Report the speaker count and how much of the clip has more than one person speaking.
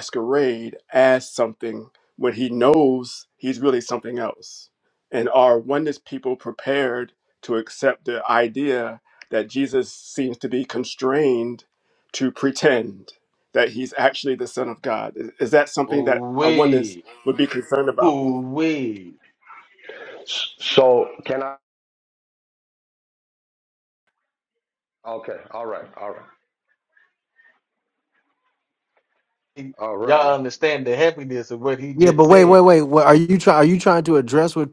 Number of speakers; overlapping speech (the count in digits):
4, about 6%